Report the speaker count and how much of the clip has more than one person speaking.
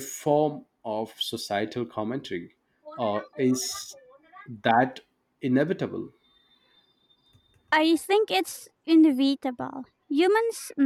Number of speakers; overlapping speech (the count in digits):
2, no overlap